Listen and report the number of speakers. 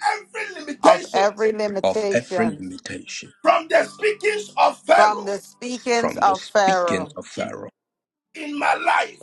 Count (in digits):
3